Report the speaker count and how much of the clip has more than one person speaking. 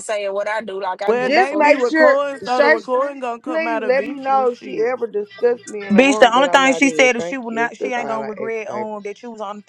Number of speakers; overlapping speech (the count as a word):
four, about 63%